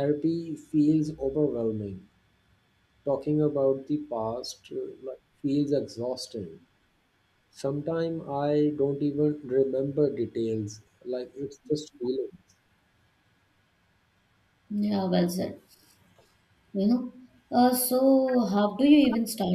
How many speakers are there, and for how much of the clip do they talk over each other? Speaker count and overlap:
2, no overlap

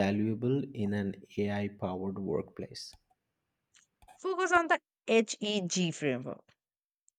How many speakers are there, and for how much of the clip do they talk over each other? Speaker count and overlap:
2, no overlap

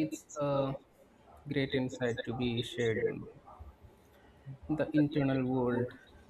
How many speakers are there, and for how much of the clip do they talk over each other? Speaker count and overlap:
1, no overlap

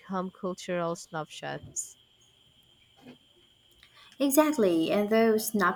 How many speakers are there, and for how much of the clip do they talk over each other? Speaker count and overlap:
2, no overlap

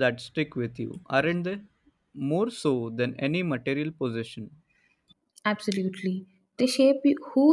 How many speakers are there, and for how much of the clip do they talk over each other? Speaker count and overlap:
2, no overlap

